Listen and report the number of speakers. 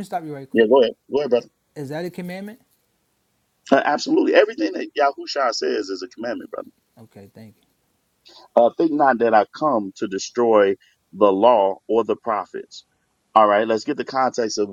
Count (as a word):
two